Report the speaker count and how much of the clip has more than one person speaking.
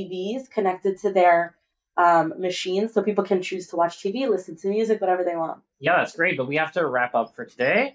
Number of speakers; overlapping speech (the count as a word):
two, no overlap